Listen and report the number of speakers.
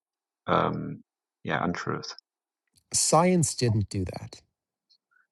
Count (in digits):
2